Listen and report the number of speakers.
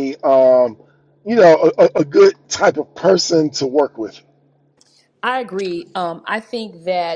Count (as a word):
two